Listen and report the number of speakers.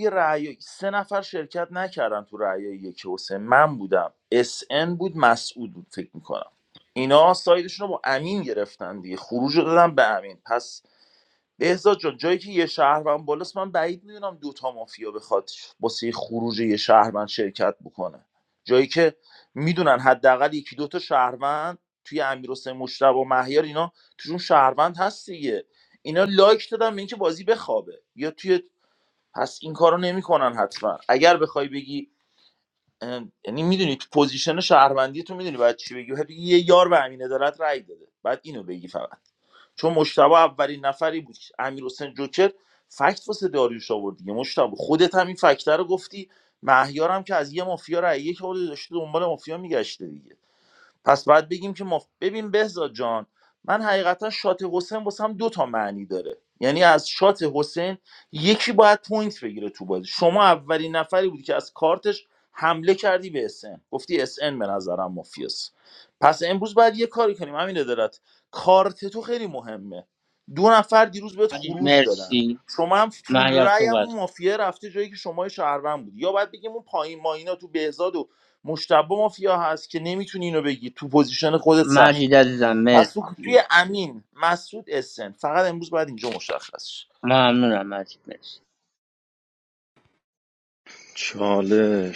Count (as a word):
three